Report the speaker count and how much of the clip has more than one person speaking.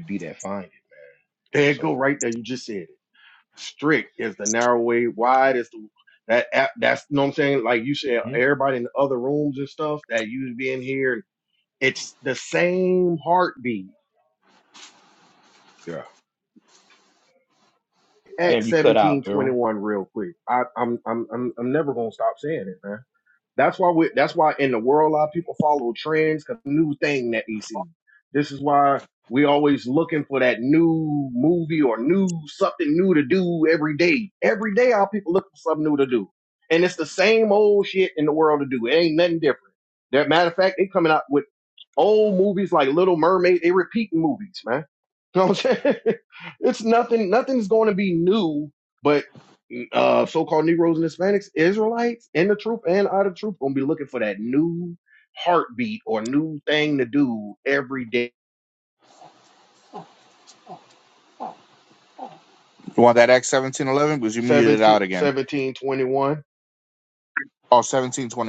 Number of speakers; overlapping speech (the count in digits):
3, about 3%